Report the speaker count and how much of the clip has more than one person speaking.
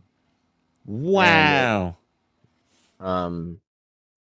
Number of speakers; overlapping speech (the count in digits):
2, about 13%